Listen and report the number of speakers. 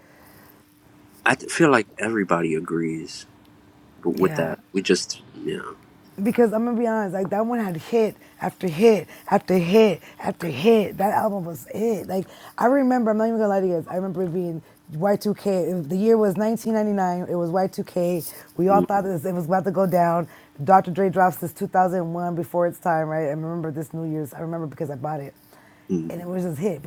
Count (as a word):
two